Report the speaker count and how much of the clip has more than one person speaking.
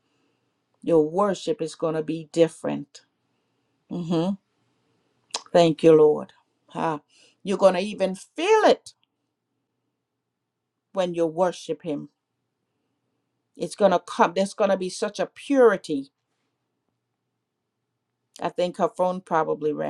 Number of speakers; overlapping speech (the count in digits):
1, no overlap